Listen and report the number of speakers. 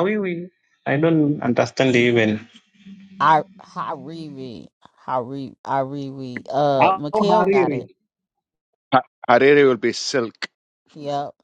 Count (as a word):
three